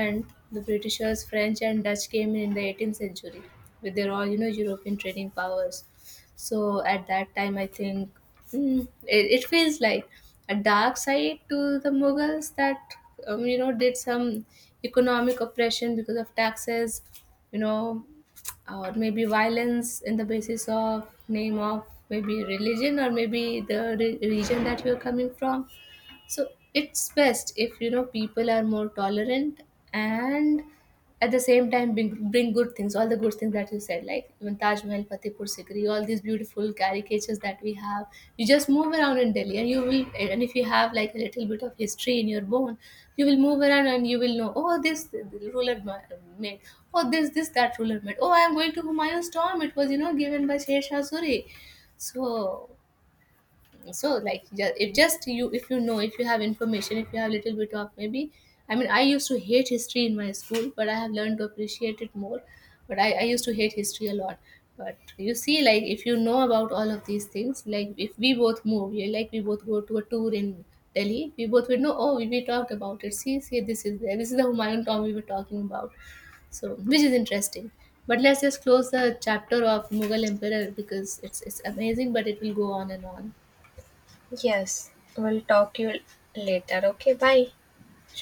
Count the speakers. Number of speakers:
2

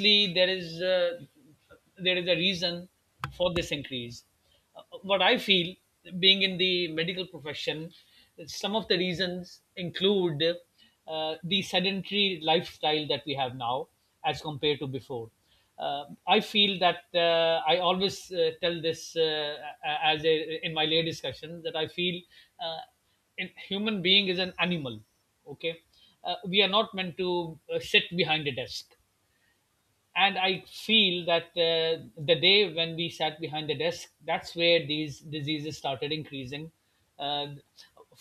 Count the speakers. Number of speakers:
1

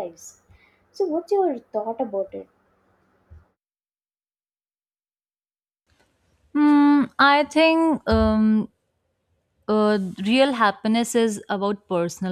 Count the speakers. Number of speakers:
2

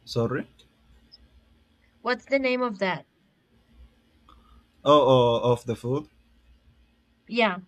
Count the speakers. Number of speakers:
2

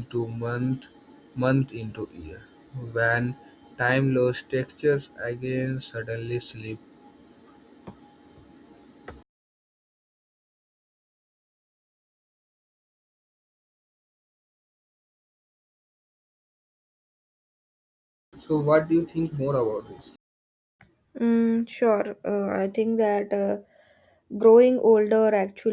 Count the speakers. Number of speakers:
2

